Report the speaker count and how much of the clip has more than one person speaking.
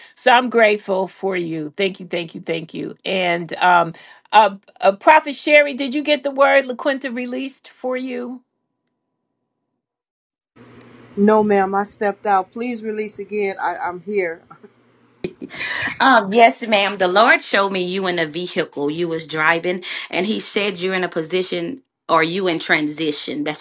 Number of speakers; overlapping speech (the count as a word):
three, no overlap